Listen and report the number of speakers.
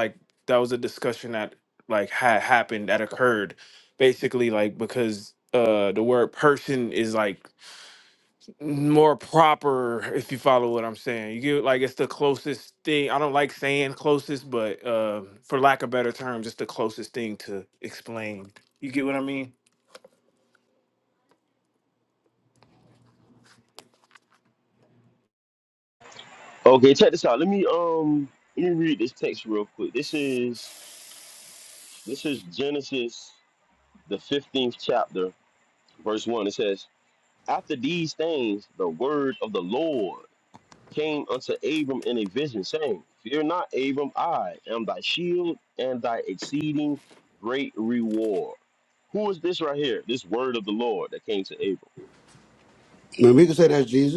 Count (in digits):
3